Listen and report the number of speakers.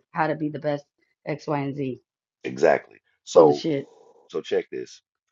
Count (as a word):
two